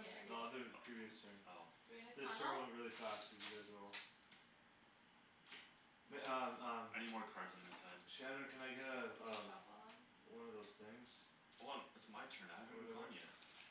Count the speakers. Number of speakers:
three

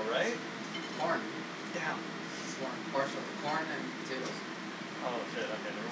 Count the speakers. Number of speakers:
two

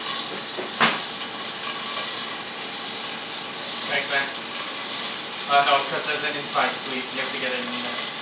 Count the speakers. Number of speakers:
one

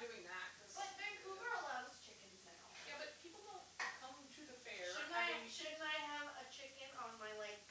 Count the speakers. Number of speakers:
two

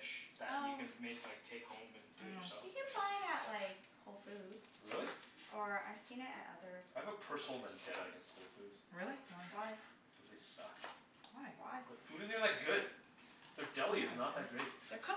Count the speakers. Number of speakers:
four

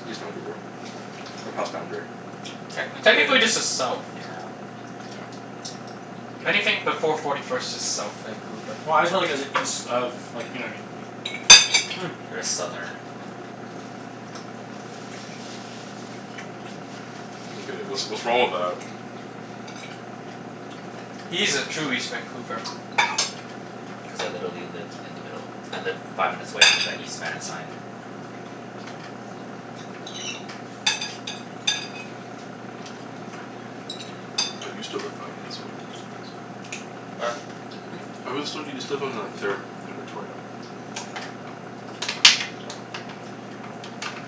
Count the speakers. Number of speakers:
four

